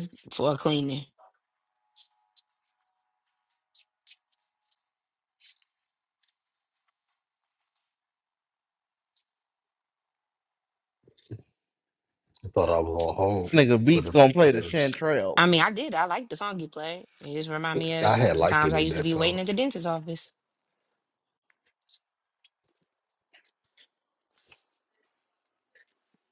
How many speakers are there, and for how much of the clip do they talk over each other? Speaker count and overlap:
three, about 8%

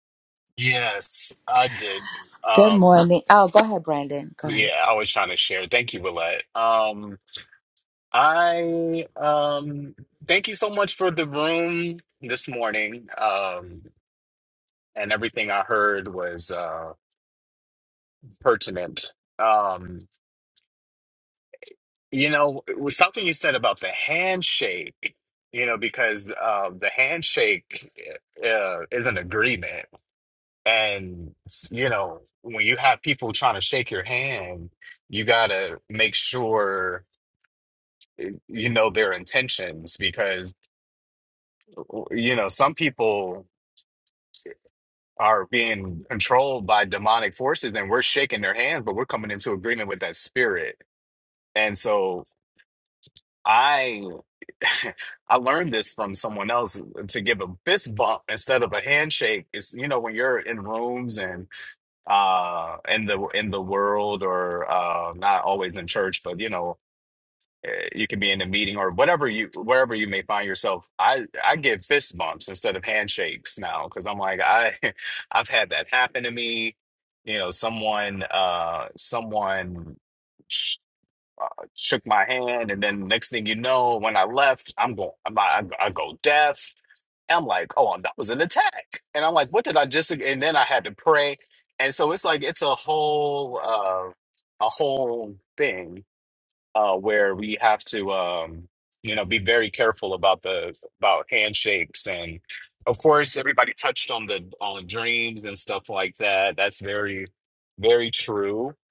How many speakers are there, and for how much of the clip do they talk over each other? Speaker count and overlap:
two, under 1%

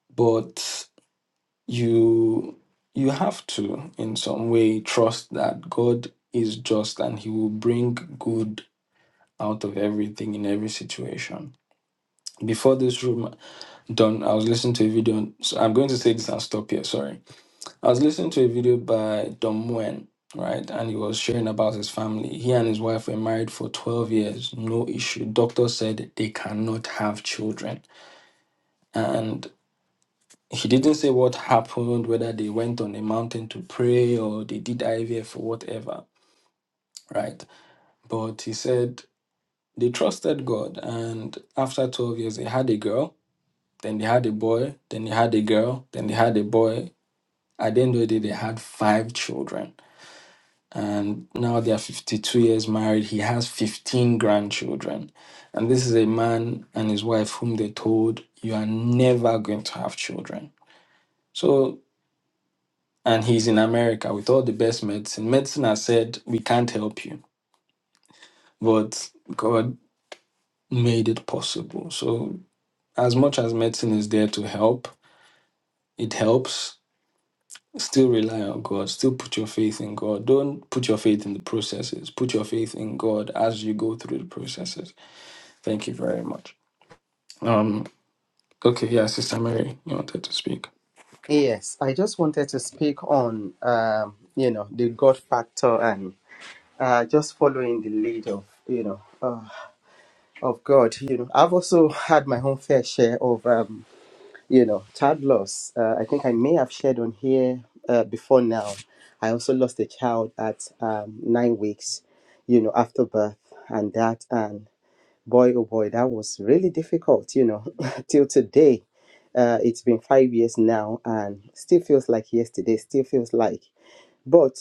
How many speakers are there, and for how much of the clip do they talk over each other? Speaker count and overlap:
two, no overlap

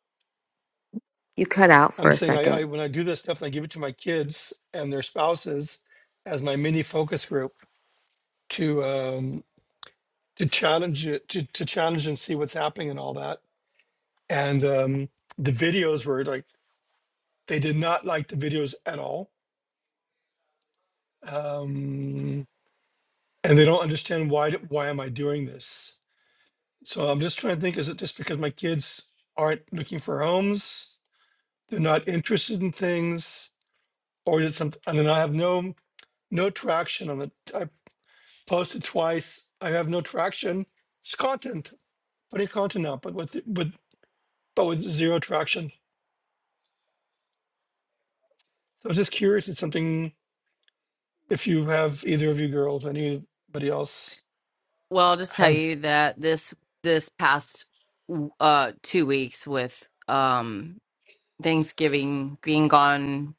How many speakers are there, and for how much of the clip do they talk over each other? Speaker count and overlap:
three, about 1%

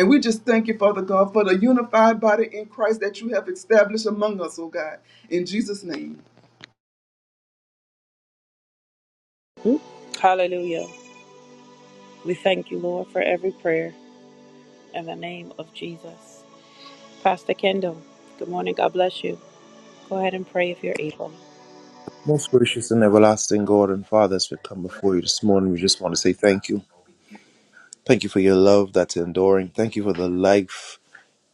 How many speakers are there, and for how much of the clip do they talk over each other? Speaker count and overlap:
three, no overlap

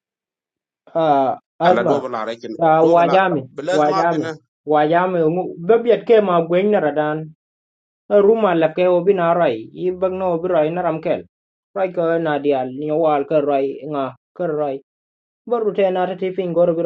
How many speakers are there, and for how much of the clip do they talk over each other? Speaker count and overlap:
two, about 10%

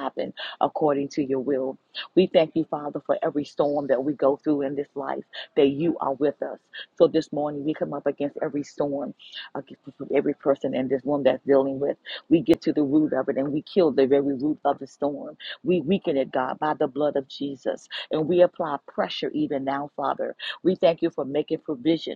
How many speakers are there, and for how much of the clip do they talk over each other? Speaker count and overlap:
one, no overlap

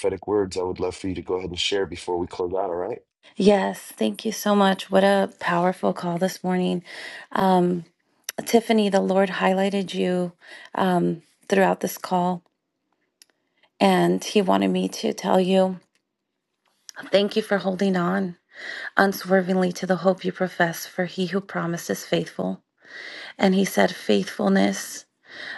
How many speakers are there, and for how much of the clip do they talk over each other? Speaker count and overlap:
two, no overlap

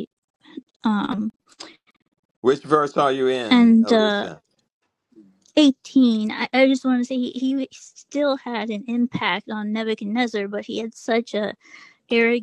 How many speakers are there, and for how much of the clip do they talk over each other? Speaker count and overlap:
two, about 7%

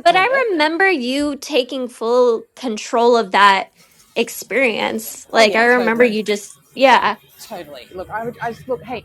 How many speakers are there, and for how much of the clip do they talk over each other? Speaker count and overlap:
two, about 13%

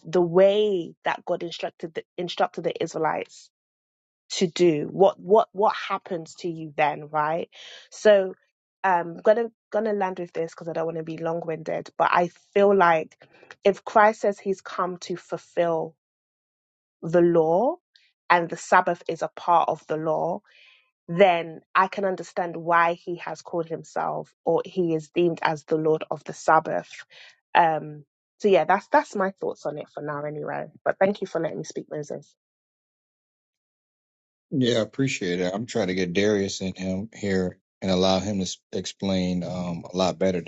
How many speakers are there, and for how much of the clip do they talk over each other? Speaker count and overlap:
two, no overlap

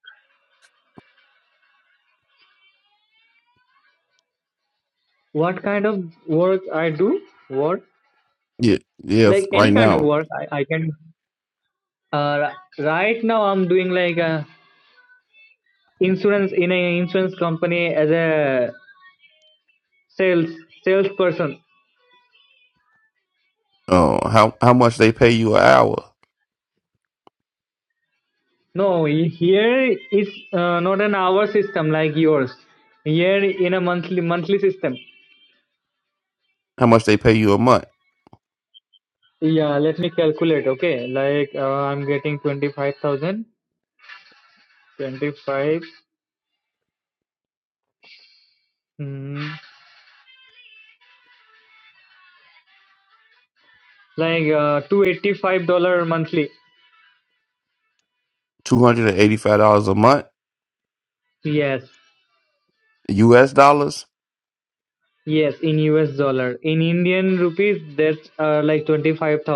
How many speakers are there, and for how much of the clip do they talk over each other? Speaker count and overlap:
two, about 1%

